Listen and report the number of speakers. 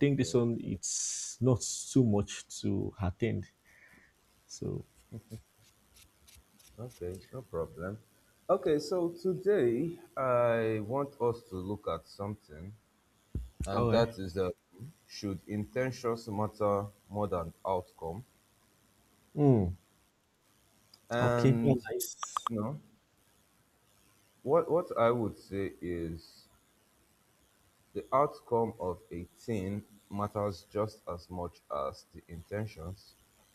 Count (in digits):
2